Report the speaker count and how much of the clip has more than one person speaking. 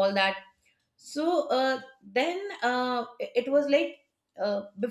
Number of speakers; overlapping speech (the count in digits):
1, no overlap